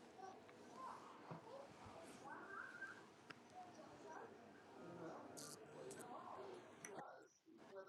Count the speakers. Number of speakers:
0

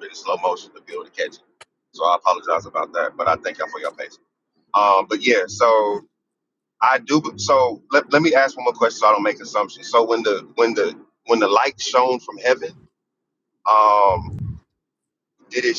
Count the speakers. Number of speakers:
1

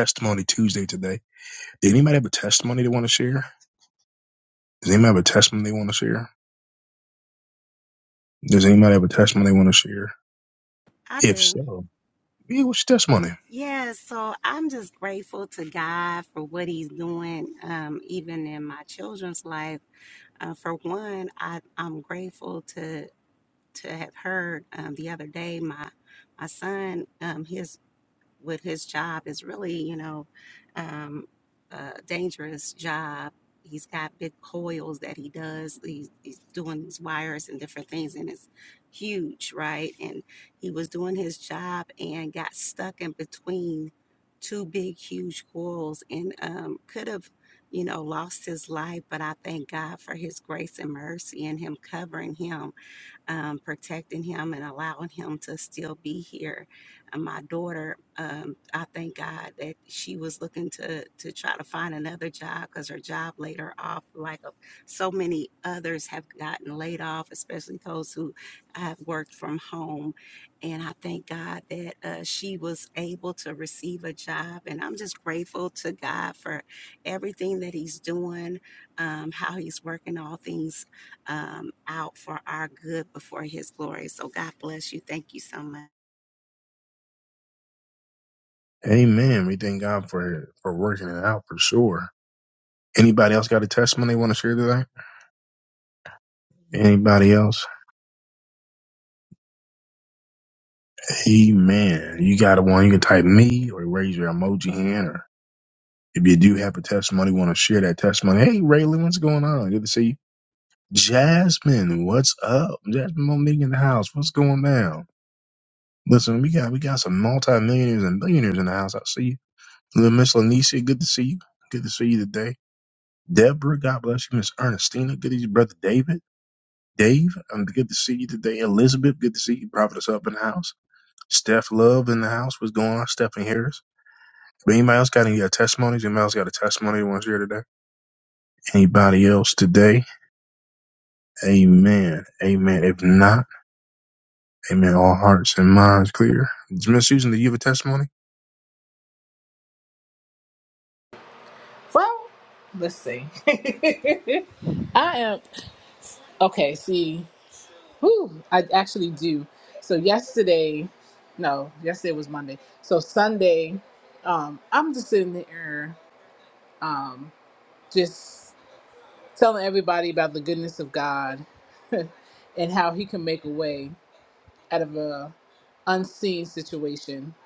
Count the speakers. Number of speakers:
3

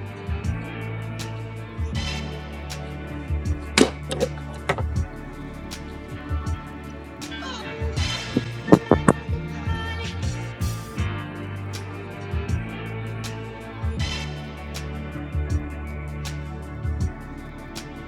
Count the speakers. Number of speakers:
0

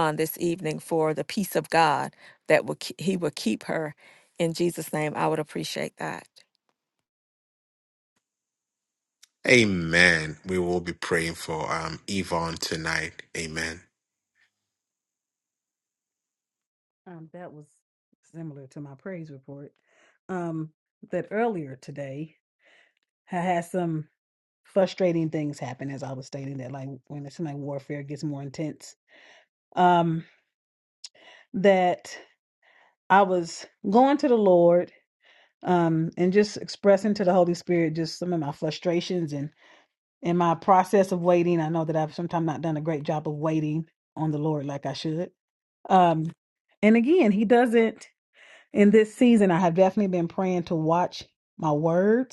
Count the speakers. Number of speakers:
3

